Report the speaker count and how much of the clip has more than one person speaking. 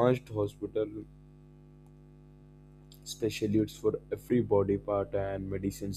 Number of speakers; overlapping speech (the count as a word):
one, no overlap